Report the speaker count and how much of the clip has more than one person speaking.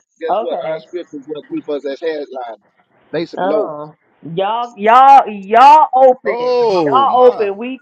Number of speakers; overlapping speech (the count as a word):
three, about 22%